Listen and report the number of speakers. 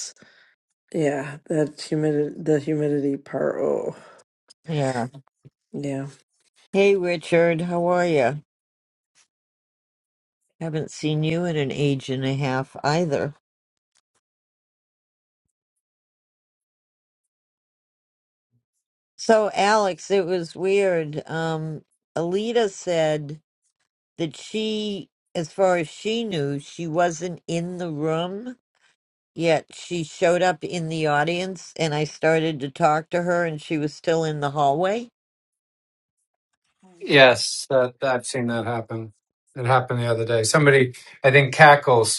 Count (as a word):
three